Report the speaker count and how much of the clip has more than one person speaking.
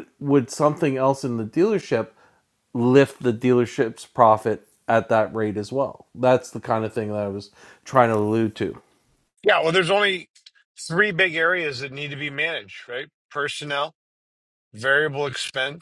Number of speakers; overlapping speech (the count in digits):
2, no overlap